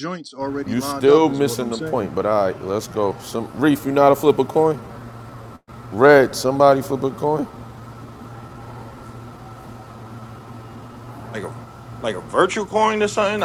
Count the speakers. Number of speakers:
3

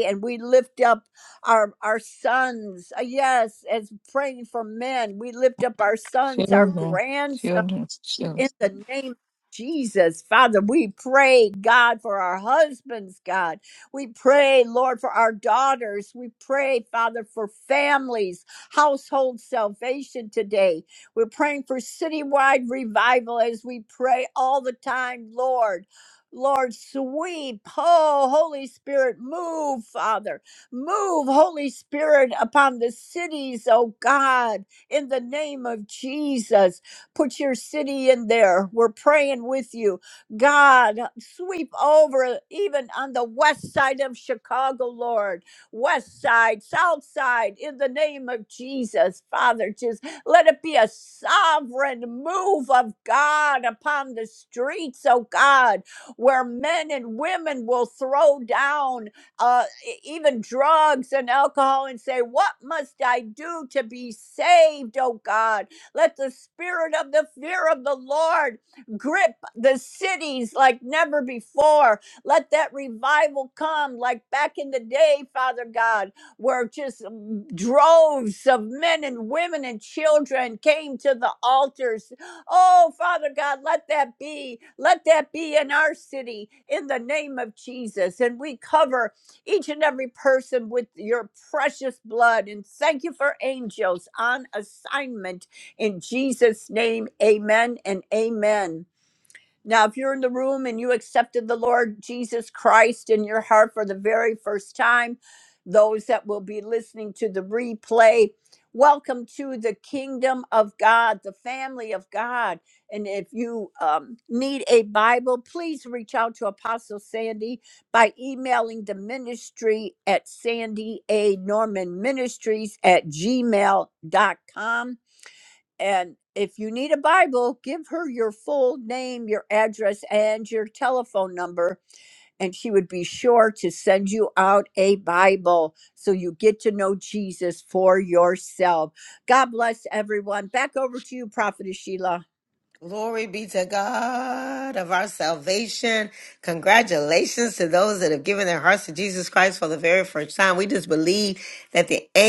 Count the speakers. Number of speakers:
3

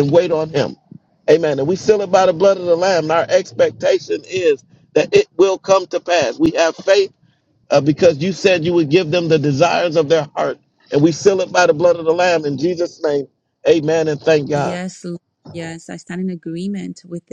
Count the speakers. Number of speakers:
2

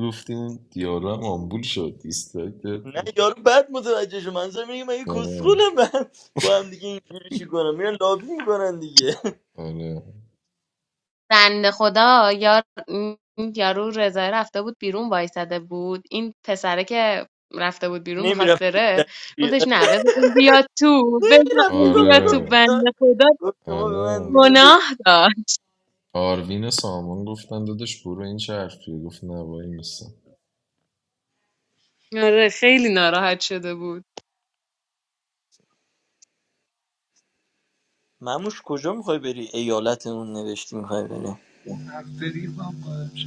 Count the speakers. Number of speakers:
4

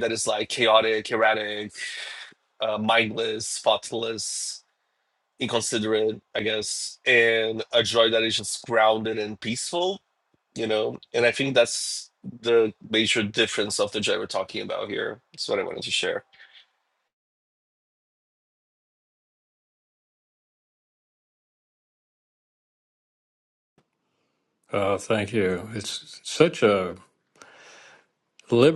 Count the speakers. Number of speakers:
2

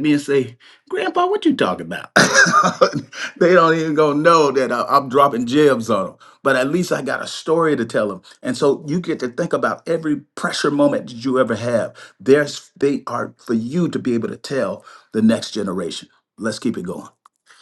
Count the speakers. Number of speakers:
1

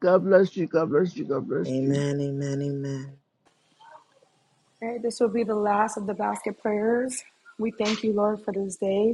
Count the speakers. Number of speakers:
3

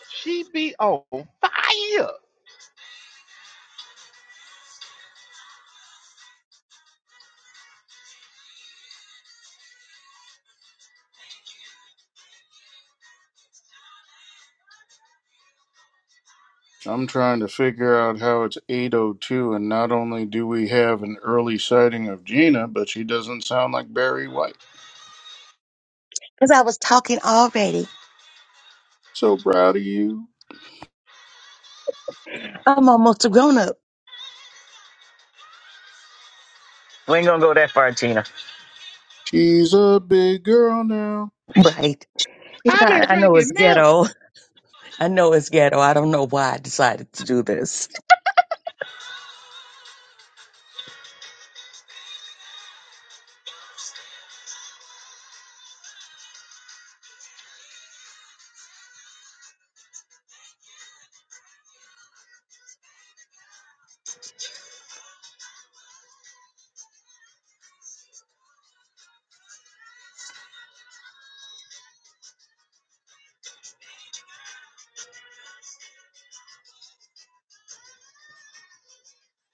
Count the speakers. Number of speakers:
4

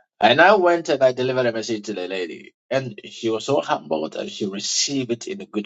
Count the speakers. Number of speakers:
1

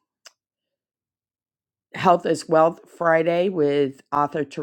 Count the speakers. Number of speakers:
1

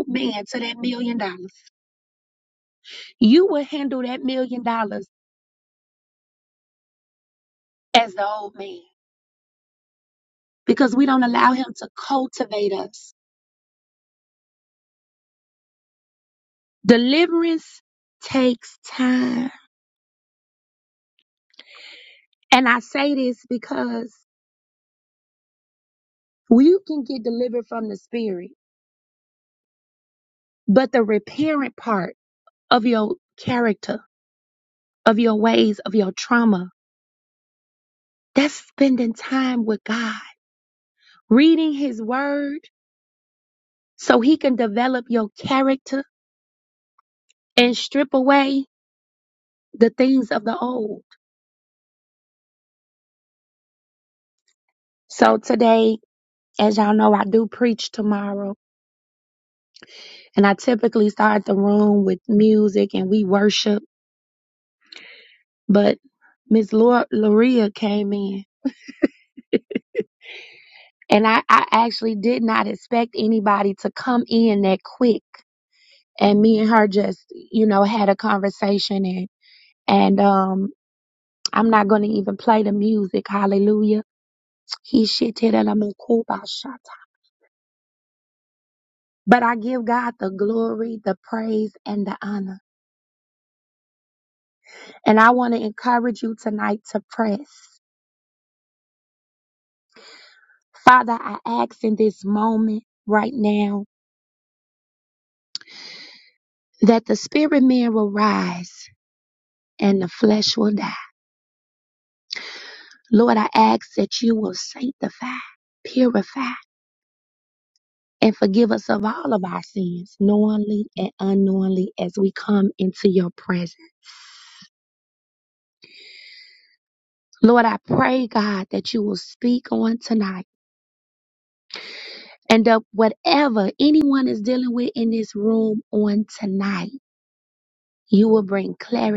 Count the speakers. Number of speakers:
1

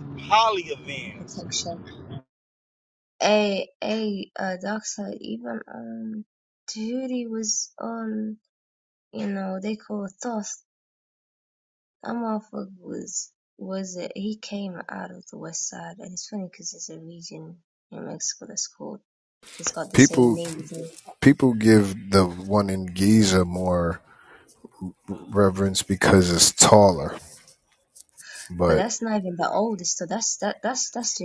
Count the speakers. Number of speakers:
3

